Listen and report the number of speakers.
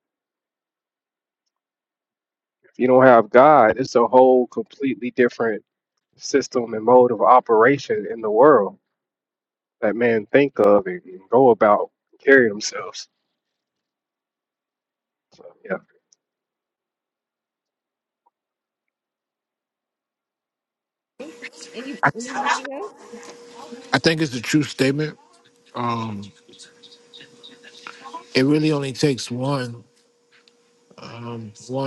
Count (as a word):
three